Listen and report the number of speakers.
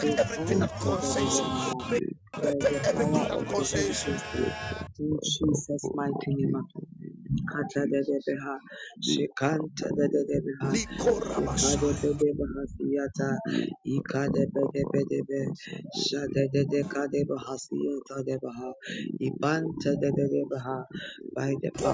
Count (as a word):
three